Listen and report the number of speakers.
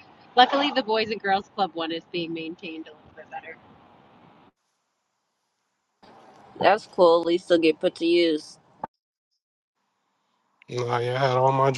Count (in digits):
3